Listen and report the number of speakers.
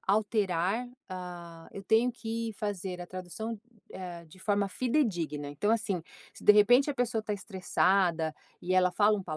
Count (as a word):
one